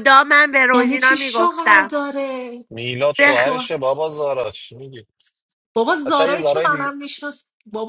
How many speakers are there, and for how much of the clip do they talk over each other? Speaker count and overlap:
3, about 32%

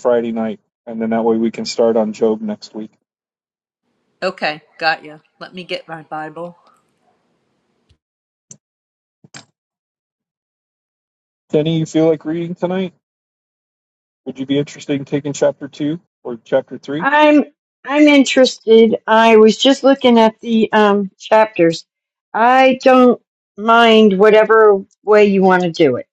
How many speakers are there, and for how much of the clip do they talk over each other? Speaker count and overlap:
3, under 1%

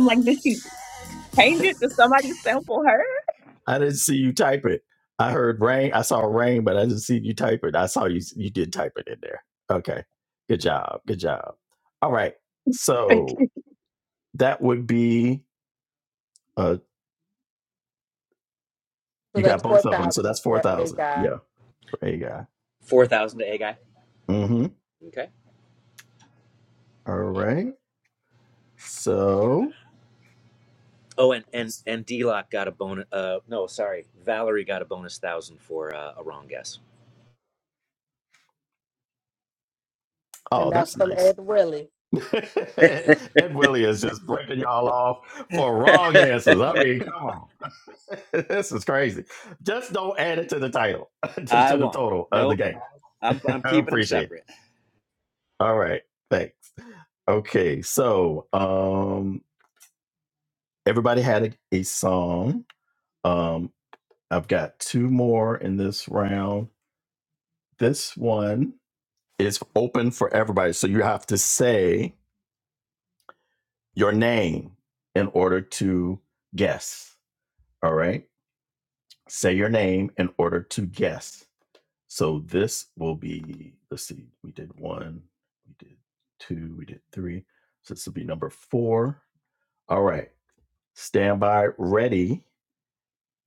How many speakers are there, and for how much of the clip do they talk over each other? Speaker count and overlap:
4, about 4%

